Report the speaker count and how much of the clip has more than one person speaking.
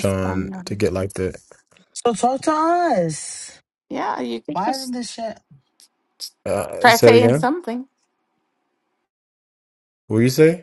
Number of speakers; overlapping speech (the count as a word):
three, about 14%